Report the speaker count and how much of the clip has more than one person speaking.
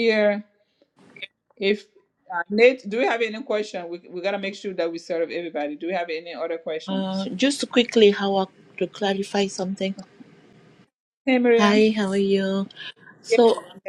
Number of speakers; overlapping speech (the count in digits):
2, about 4%